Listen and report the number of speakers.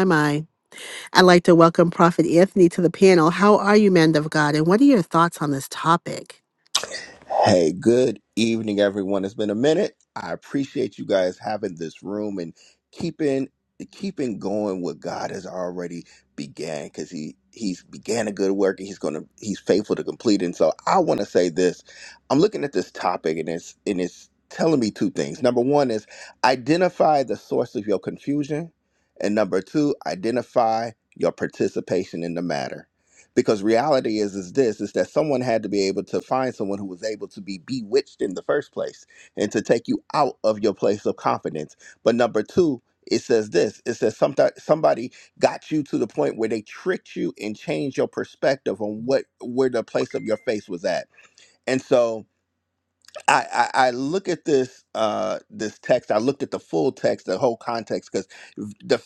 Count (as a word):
two